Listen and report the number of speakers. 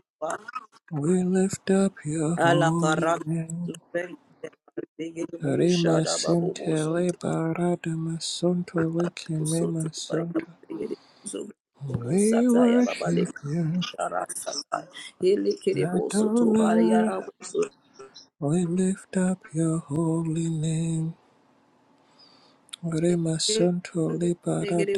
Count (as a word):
two